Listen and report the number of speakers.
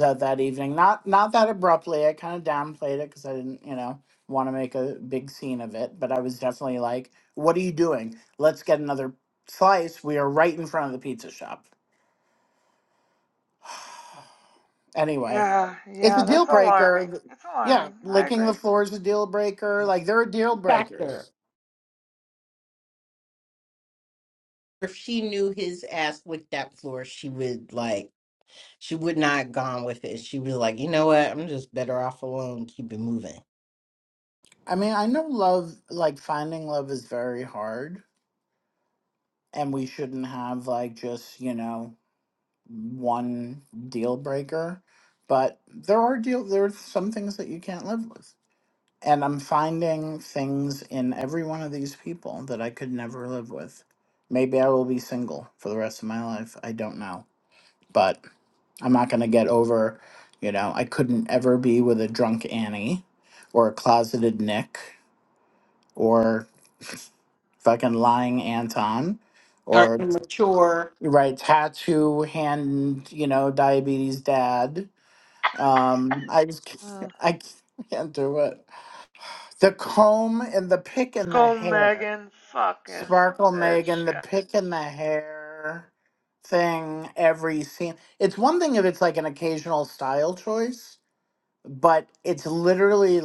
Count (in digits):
3